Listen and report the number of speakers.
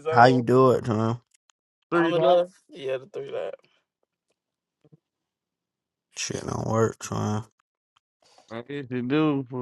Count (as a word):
three